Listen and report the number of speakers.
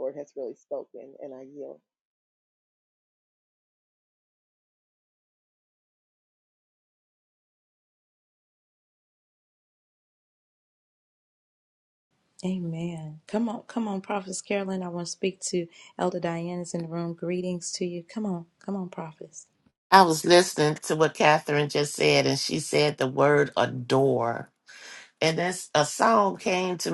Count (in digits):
3